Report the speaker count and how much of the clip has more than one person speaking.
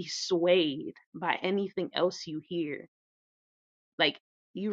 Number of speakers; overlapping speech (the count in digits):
1, no overlap